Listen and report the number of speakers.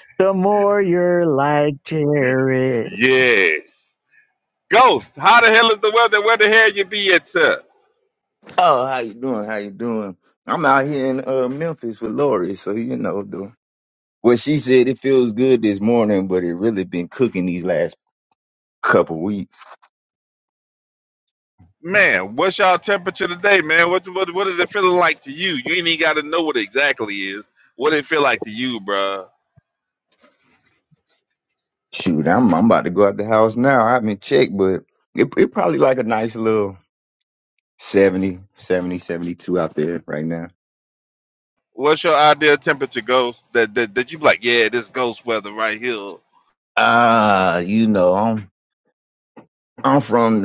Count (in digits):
3